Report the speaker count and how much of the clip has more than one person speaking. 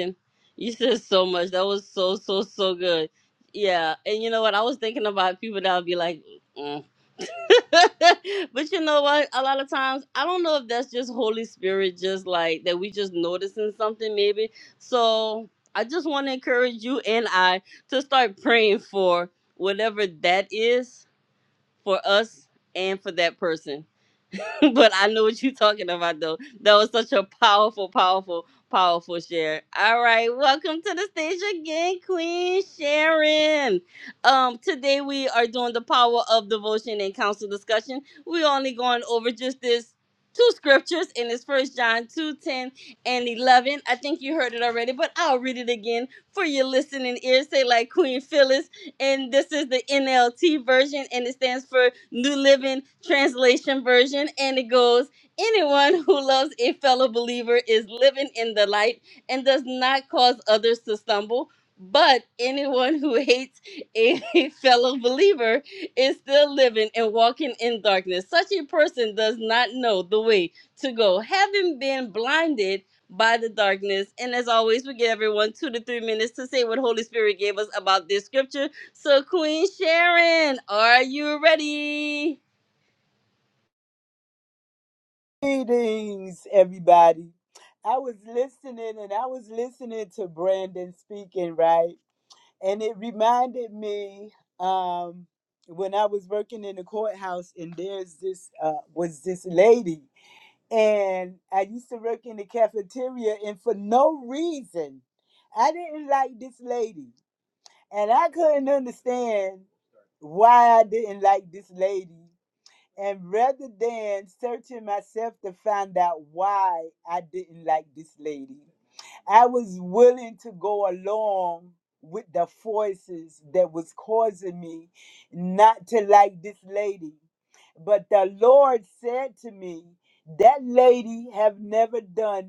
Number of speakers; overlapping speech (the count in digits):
2, no overlap